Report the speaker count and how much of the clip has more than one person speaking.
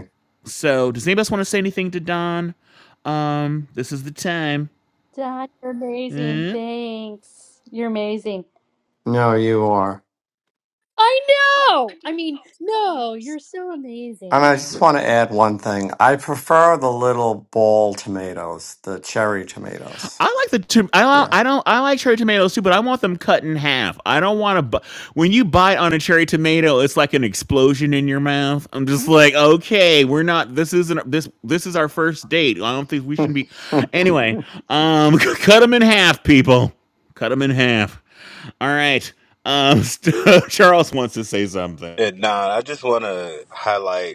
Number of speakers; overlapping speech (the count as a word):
four, about 2%